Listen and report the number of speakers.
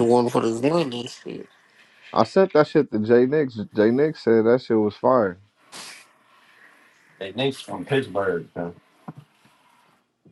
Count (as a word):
three